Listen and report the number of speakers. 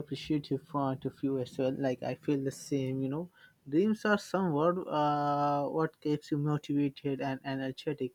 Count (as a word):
one